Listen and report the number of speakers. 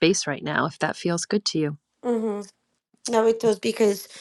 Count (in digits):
2